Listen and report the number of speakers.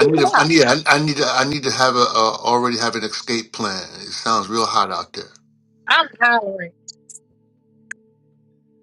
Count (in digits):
2